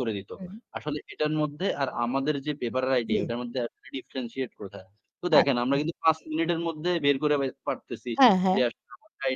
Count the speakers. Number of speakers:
2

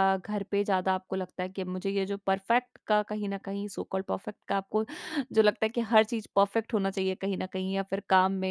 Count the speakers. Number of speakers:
1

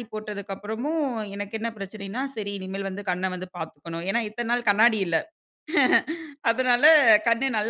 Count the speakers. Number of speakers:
1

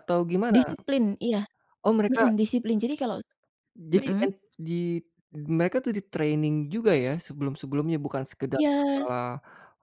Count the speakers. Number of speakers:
2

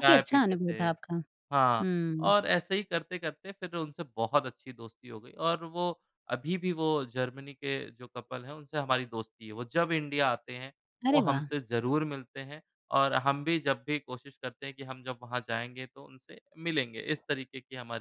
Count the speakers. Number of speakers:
2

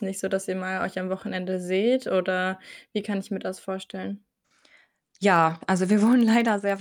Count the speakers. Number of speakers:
2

